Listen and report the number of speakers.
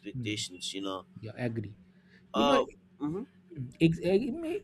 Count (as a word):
two